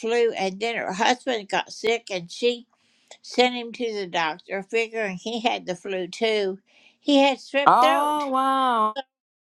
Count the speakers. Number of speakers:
two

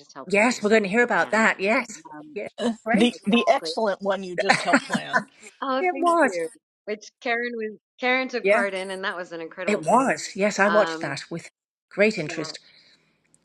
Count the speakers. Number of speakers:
three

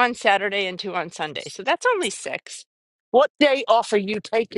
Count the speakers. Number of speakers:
two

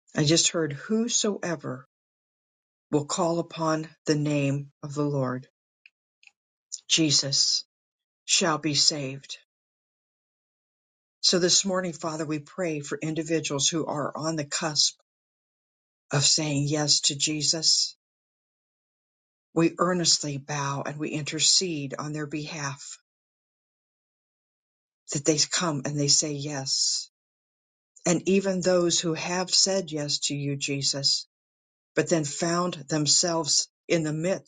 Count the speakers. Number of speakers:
one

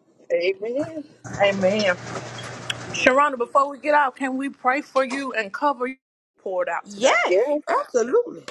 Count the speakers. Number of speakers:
three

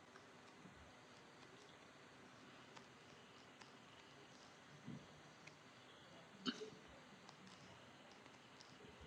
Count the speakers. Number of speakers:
zero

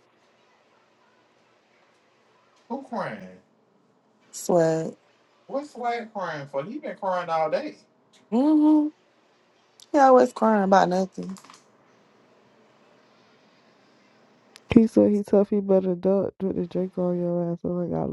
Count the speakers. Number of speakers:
three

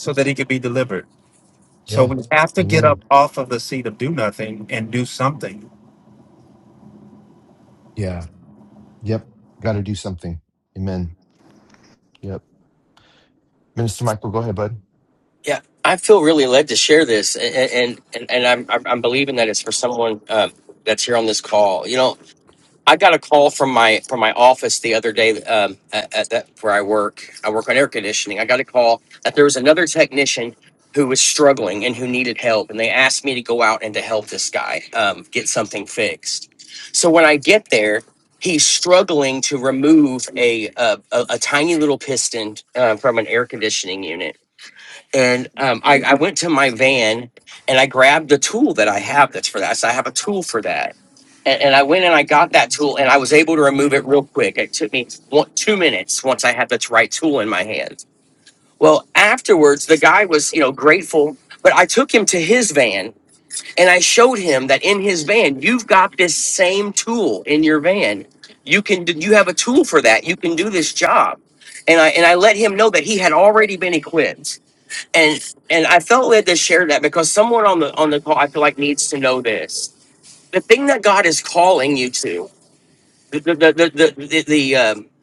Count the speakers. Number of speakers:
three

